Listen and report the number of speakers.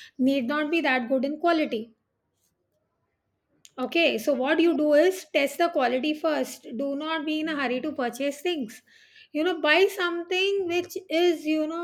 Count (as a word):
one